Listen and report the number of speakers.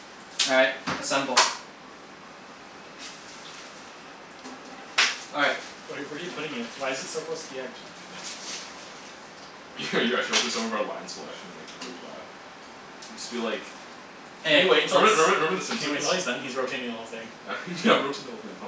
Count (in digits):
3